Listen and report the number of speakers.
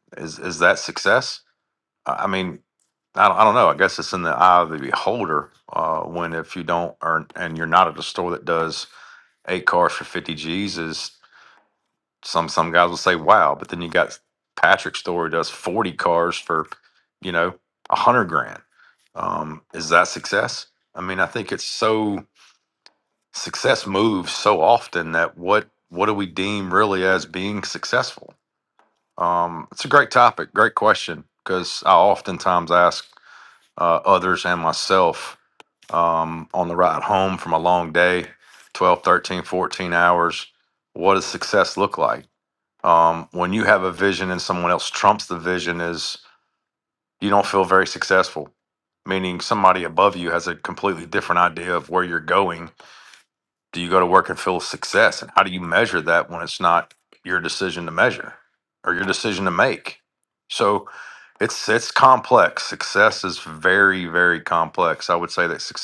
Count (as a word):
one